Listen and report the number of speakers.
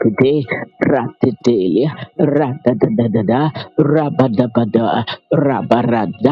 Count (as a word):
one